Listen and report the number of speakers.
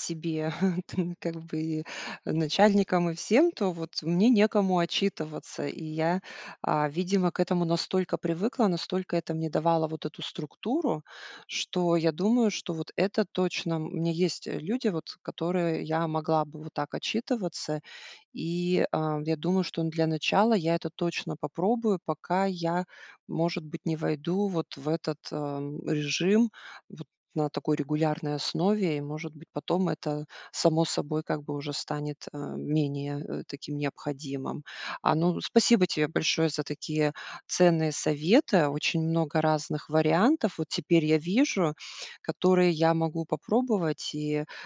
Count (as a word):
one